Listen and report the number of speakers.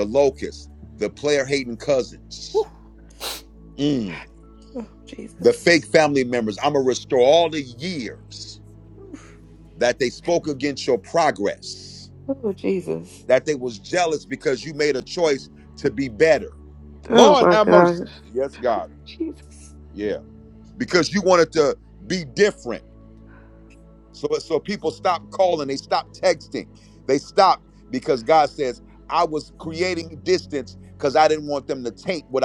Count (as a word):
two